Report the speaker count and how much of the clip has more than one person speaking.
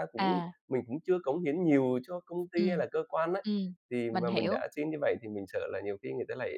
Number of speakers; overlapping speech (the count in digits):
2, about 13%